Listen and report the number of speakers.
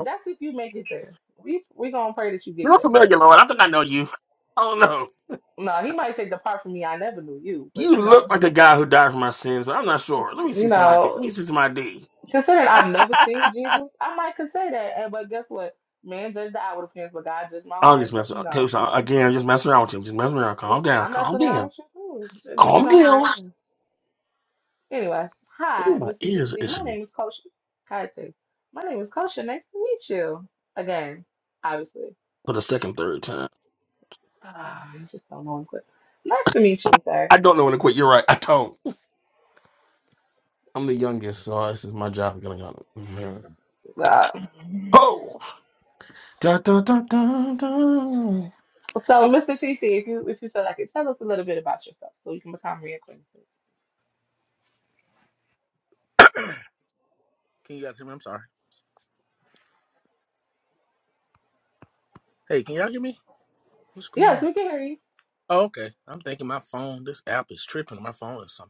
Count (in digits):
3